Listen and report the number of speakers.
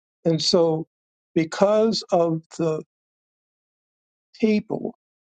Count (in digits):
1